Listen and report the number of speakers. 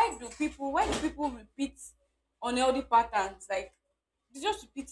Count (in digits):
1